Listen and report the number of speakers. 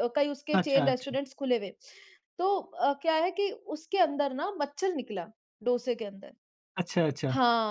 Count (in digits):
2